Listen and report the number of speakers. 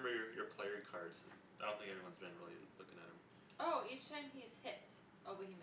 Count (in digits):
2